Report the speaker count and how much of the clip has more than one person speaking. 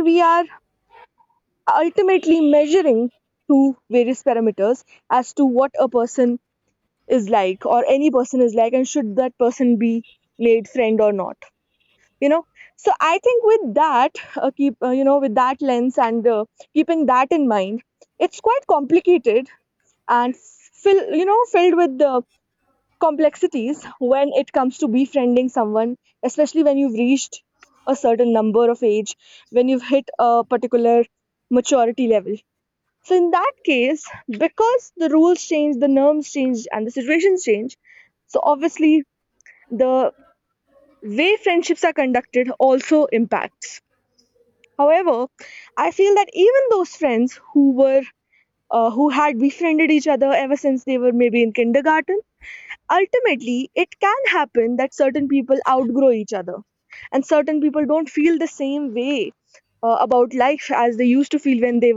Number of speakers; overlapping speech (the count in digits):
1, no overlap